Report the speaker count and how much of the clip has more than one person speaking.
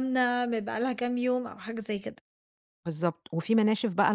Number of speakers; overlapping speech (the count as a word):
two, no overlap